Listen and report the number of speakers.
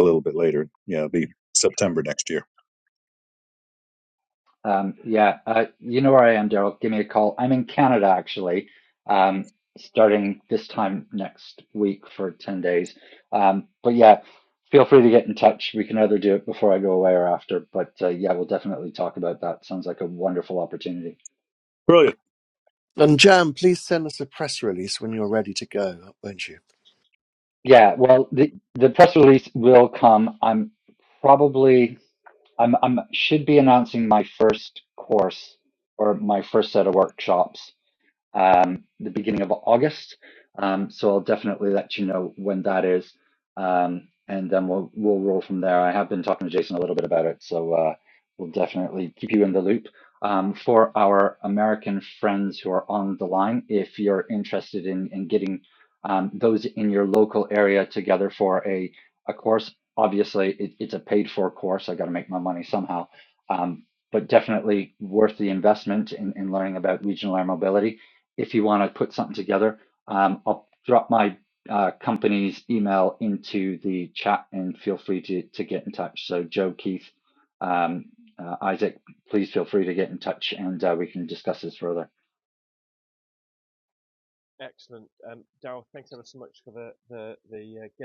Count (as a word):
four